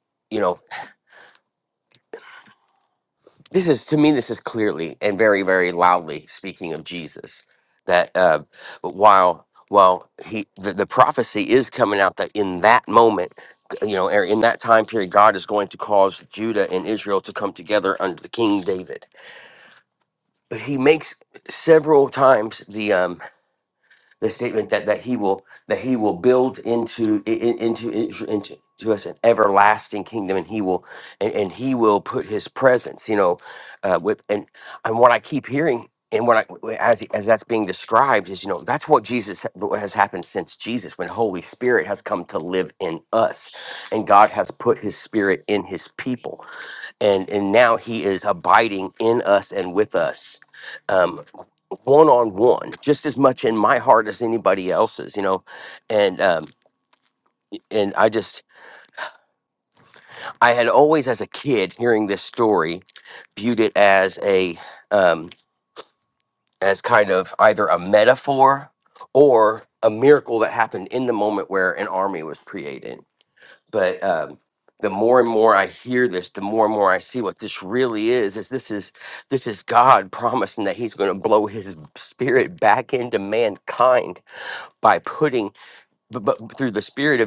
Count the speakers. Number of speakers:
1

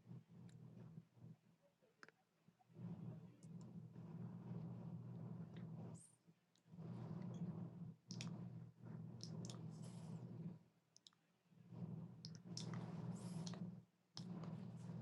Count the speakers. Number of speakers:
0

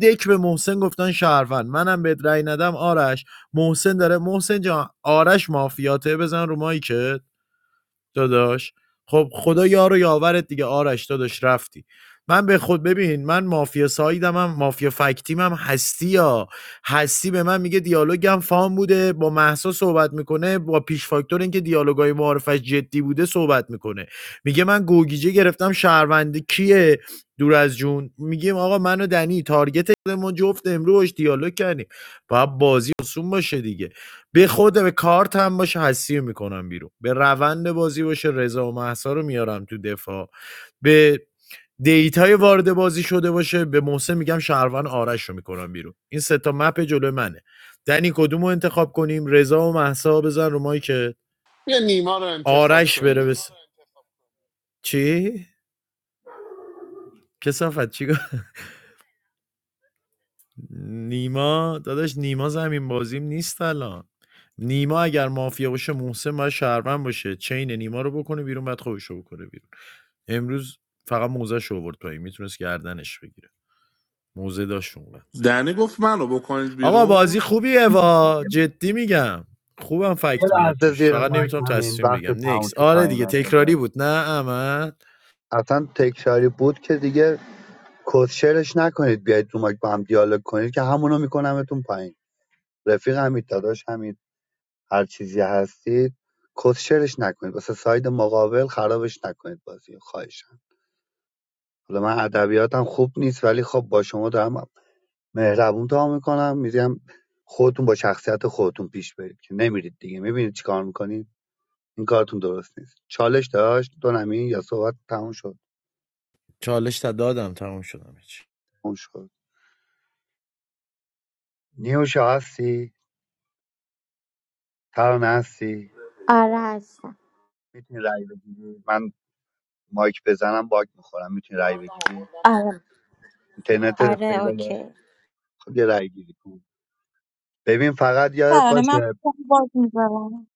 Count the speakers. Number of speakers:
6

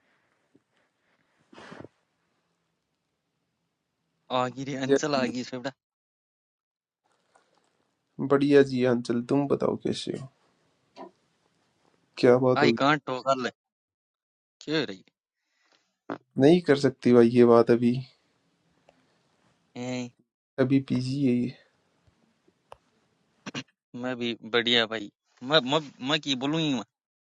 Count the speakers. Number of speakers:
2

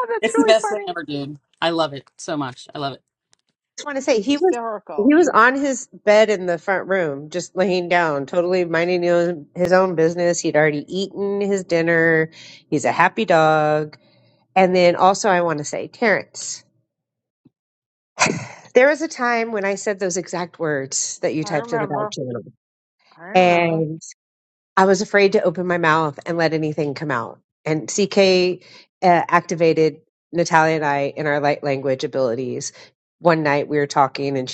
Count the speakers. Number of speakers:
3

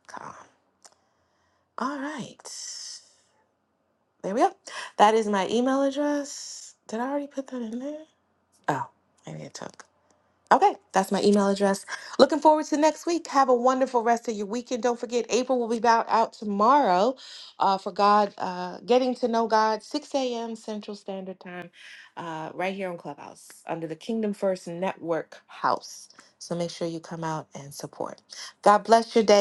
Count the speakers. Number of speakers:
1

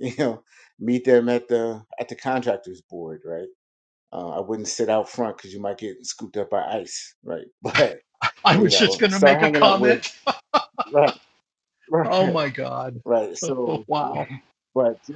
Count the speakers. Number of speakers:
2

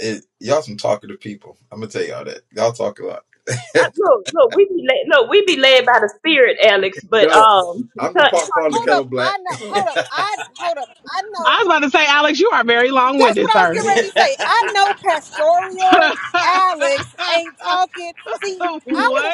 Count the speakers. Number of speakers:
4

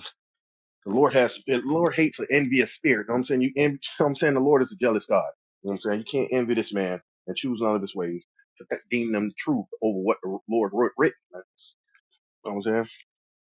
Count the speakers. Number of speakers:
1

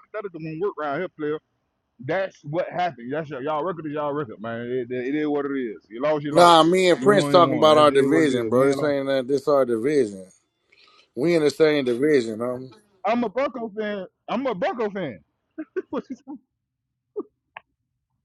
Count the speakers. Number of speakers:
2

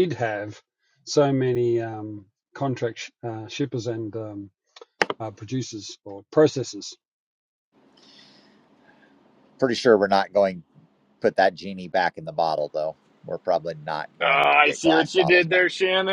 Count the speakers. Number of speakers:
3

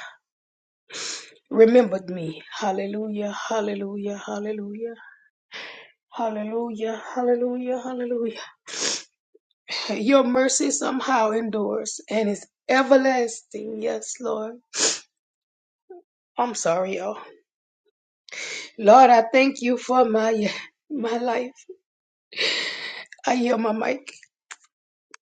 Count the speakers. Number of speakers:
1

